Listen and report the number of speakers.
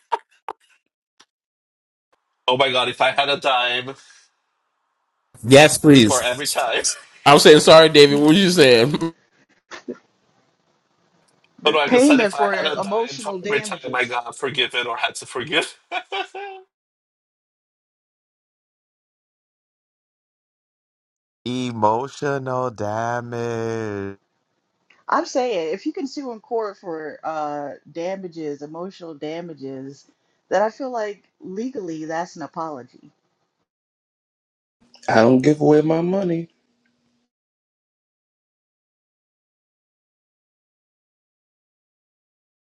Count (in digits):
5